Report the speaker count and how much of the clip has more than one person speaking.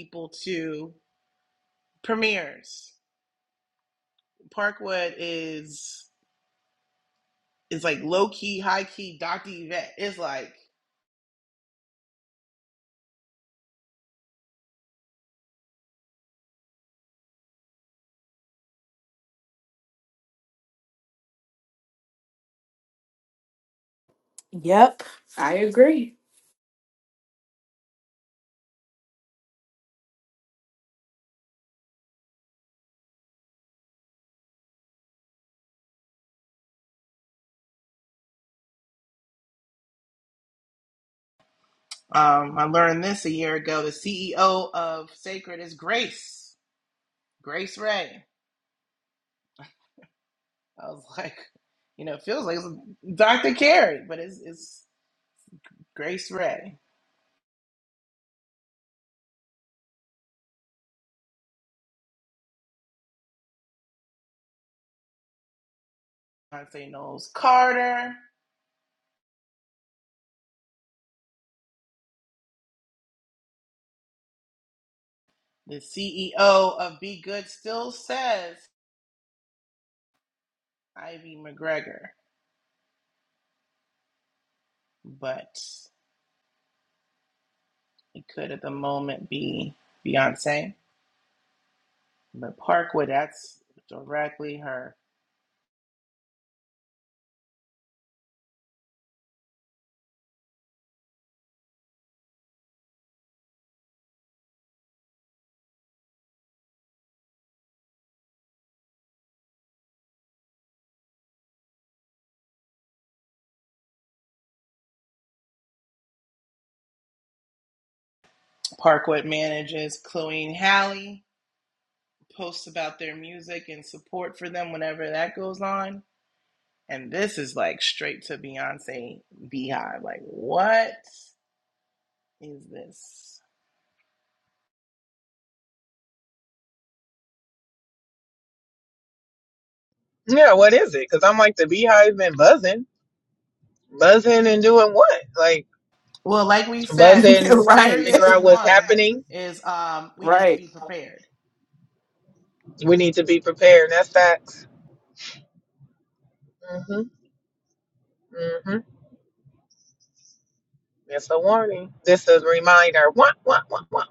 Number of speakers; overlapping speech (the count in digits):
3, about 1%